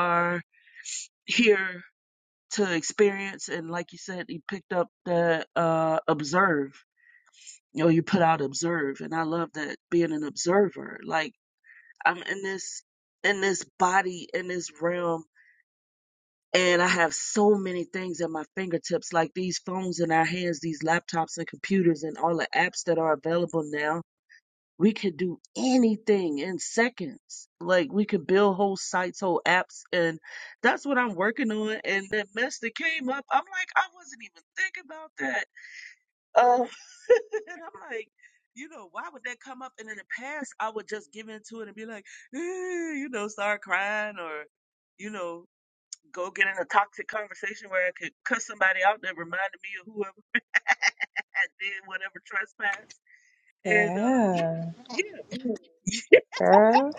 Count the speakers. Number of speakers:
2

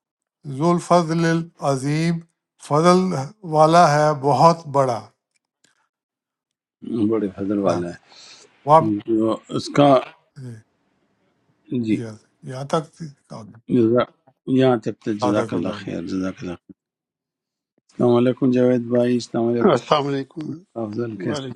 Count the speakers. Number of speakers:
3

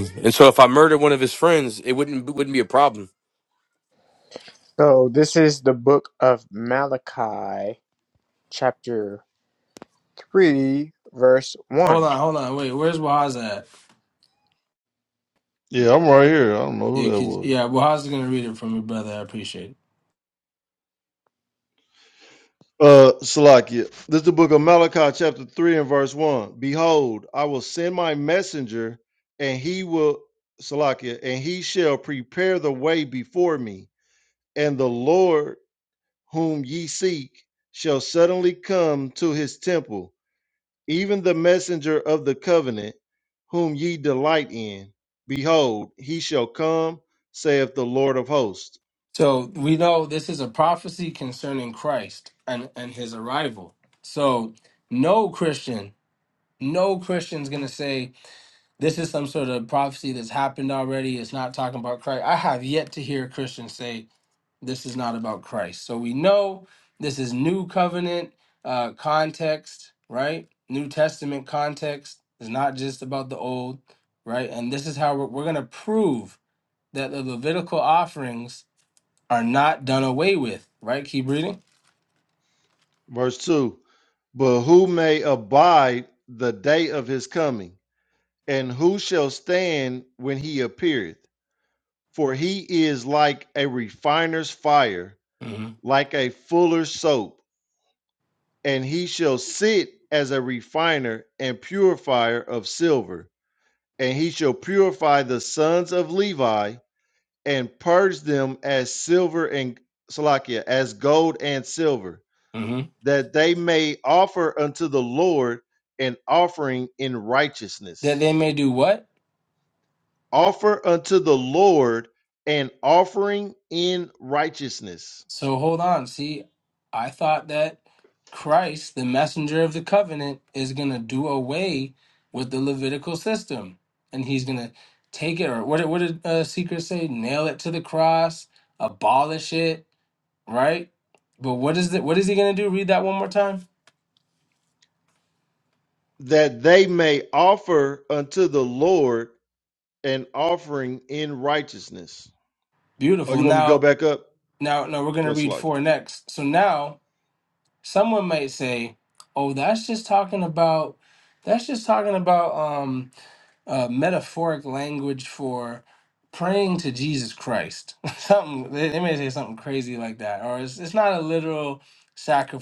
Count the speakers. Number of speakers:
4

